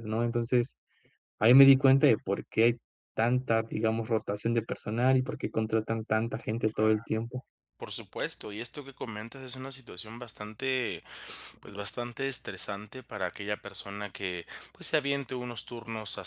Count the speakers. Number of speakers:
two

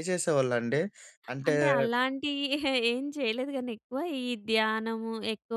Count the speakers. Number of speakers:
two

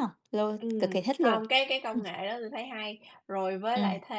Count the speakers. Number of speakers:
two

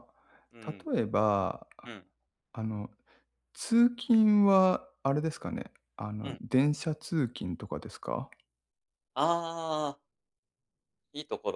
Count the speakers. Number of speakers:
two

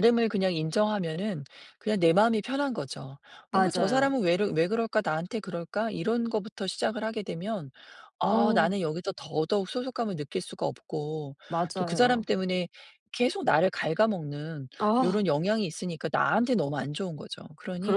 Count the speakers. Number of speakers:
two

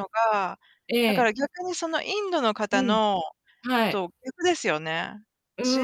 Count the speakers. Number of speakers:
two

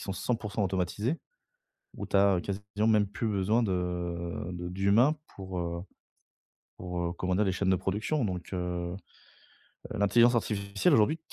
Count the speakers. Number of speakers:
one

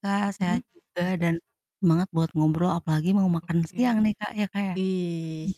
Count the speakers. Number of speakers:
two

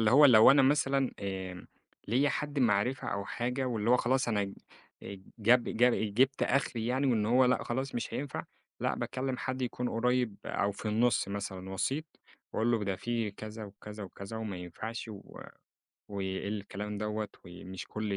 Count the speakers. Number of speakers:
one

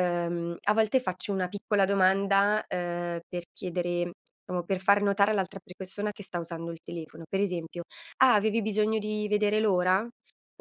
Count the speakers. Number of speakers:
one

